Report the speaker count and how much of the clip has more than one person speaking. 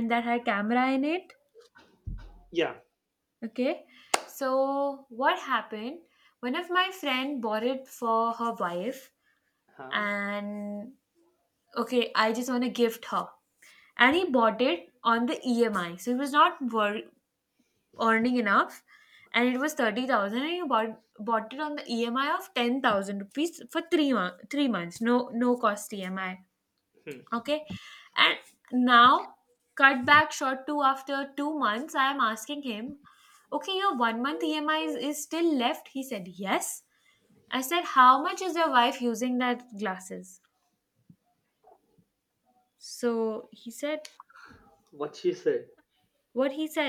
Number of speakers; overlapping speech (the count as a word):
two, under 1%